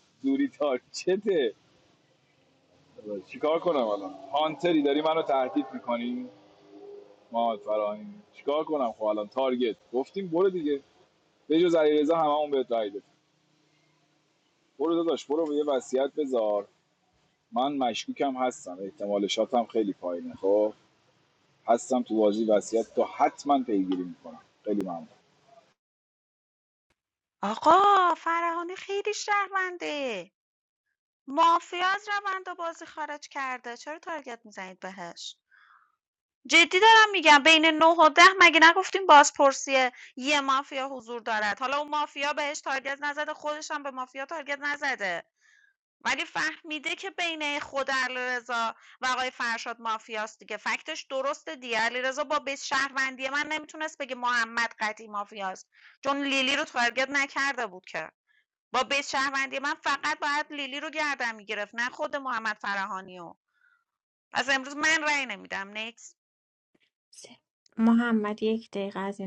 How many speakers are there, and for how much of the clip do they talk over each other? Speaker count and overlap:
3, no overlap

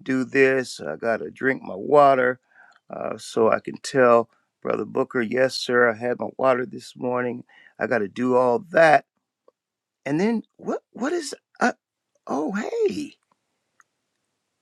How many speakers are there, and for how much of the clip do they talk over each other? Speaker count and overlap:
1, no overlap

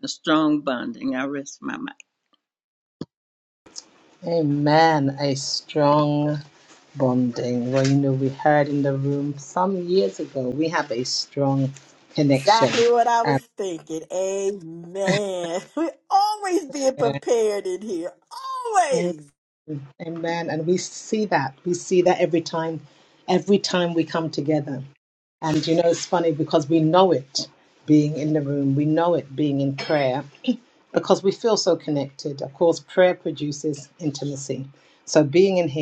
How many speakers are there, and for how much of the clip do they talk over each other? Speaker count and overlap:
3, about 2%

